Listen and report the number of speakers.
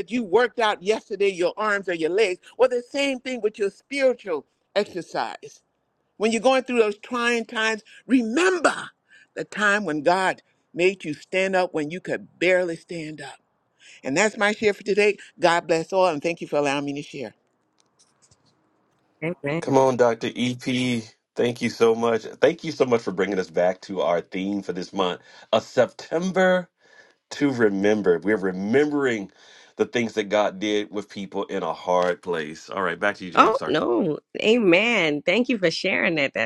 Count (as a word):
three